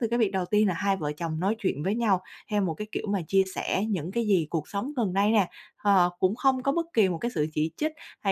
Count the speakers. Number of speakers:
one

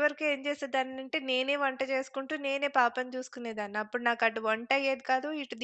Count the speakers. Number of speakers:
one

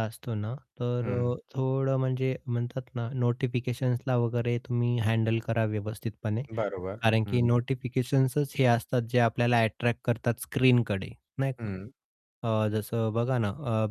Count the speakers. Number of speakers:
two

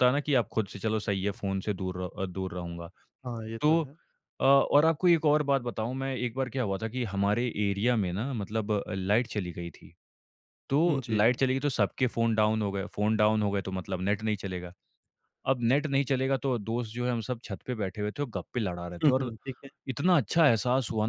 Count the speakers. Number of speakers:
two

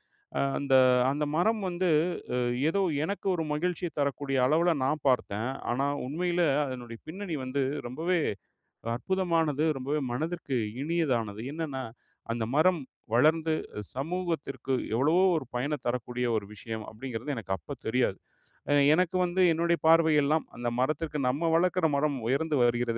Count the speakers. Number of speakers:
one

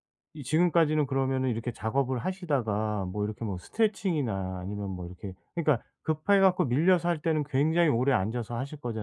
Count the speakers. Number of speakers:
one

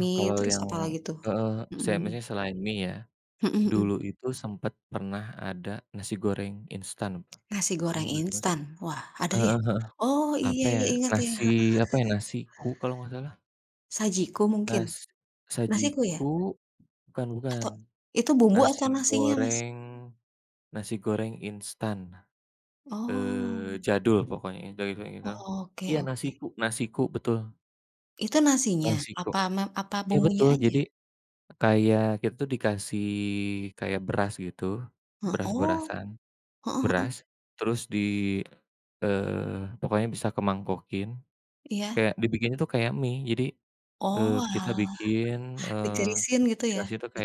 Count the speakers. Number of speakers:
two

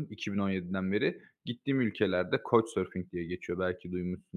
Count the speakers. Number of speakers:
one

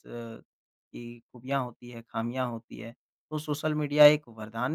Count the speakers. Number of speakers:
one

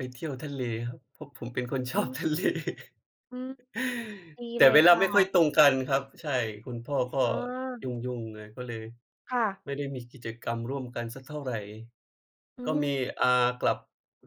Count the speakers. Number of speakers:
two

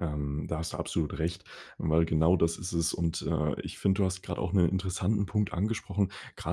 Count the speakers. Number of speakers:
one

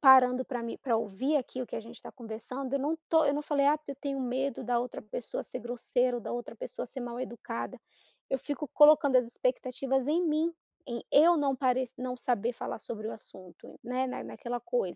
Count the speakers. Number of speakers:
one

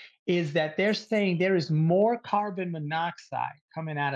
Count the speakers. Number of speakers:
one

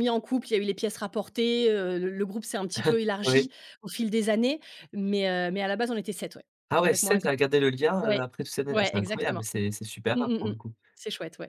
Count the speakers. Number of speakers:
two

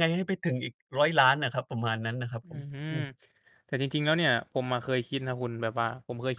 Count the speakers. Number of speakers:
two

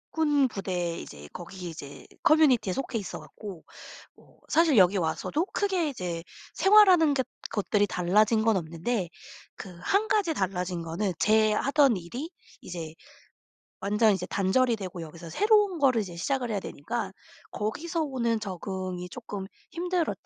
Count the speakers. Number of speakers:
one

